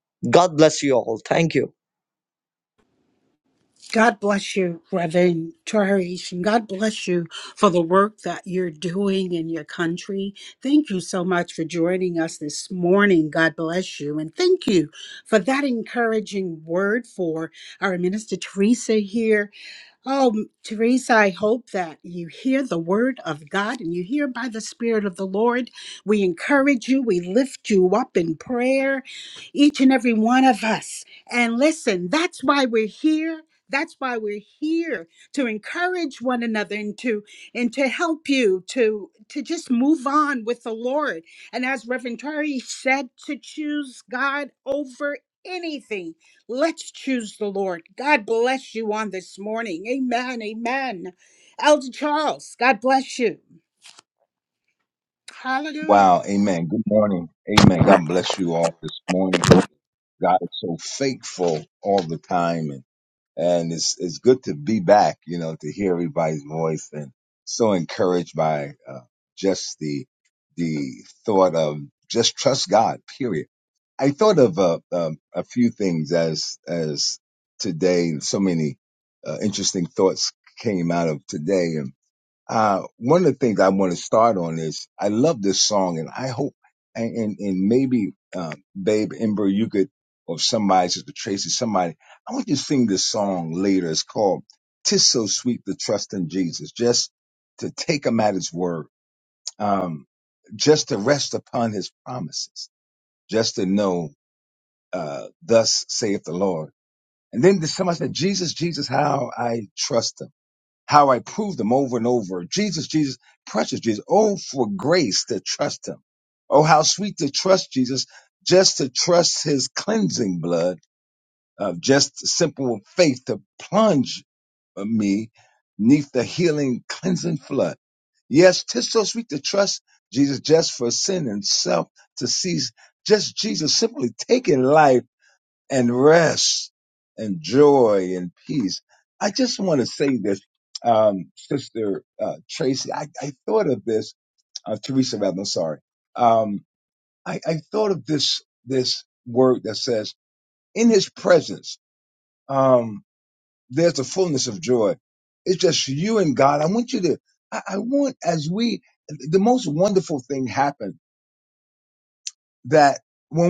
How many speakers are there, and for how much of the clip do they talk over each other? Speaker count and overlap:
3, under 1%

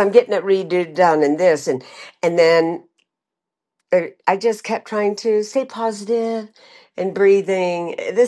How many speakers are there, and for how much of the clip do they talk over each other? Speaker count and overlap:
1, no overlap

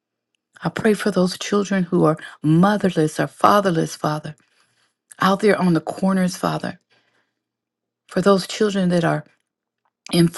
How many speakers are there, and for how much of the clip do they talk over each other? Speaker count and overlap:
1, no overlap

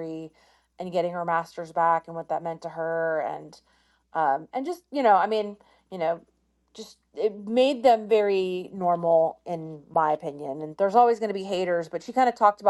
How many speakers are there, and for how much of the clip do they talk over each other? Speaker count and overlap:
1, no overlap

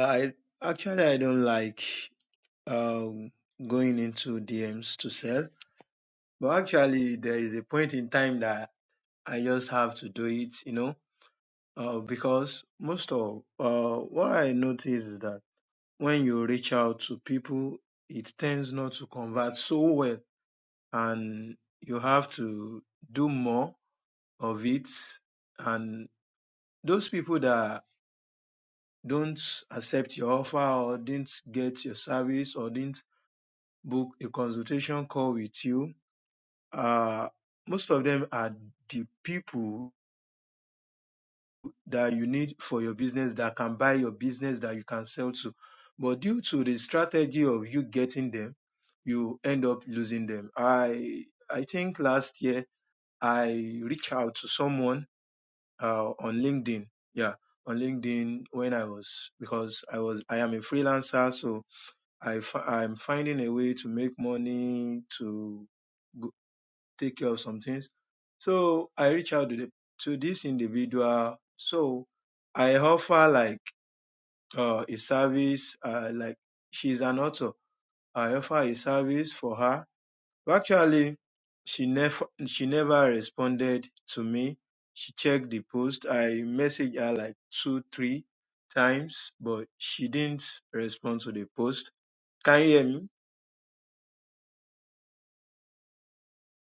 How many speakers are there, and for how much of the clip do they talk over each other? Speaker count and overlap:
1, no overlap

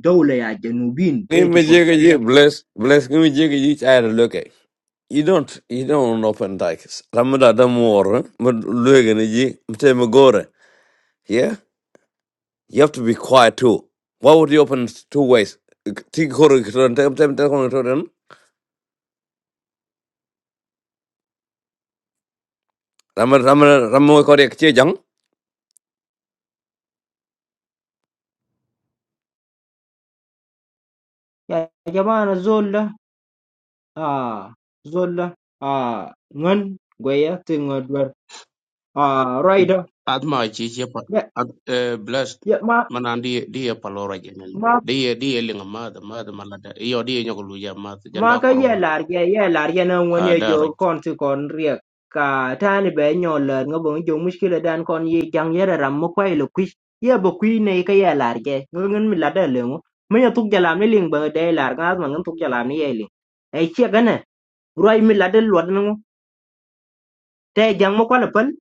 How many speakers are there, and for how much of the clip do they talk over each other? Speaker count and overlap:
3, about 3%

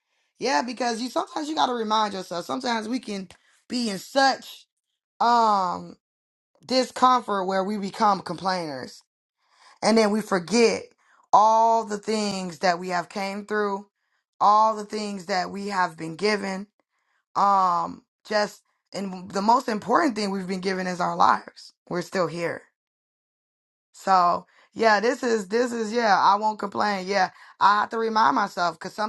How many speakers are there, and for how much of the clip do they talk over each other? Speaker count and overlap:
1, no overlap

